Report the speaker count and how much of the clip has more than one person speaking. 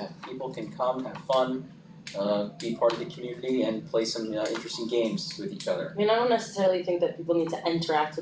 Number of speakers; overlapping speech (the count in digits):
2, no overlap